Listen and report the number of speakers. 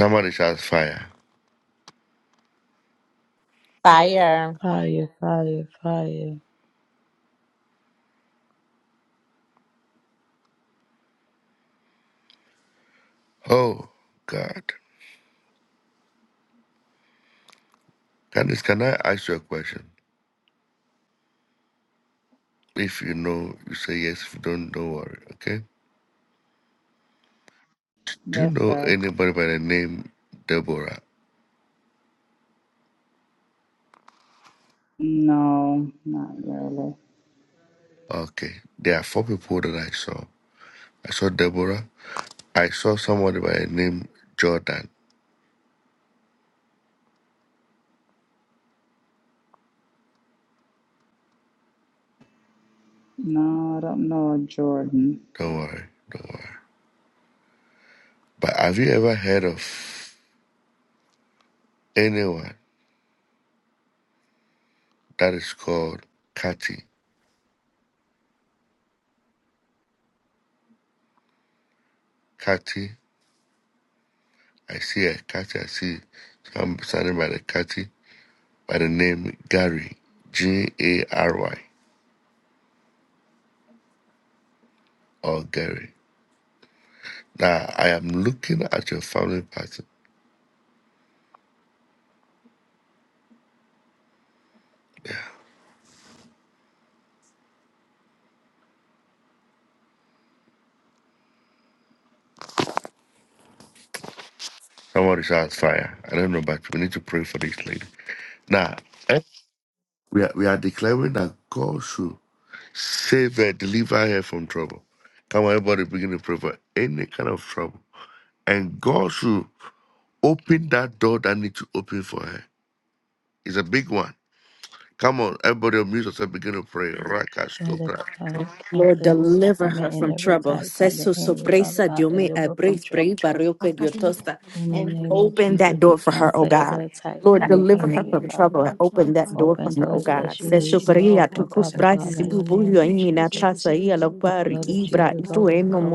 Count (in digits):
5